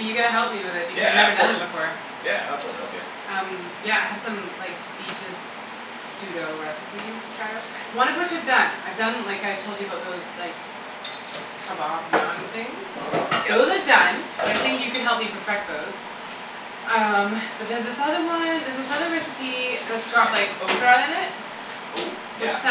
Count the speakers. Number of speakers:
2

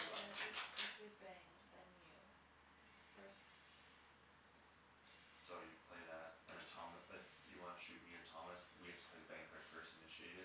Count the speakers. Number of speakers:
2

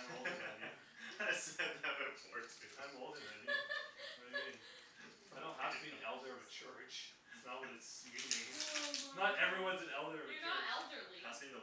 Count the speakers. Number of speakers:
4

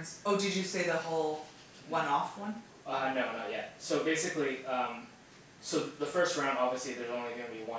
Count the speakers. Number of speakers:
2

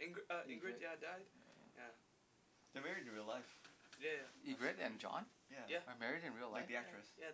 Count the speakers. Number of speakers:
3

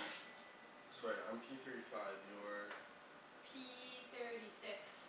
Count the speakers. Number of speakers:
2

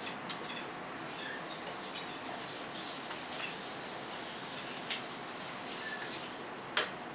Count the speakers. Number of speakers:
0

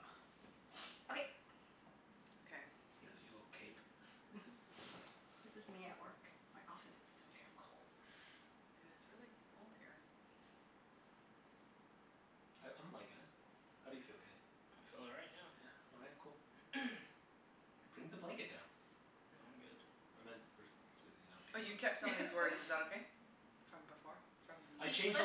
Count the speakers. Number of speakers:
4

